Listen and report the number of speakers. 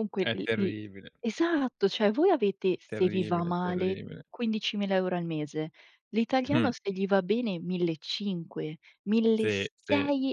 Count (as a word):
two